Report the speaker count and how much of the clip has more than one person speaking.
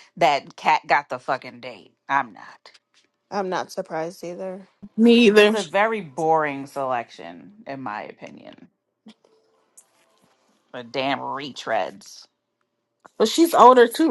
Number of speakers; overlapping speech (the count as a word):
three, about 2%